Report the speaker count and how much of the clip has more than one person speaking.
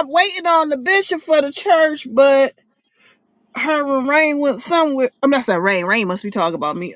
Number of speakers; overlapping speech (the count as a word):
one, no overlap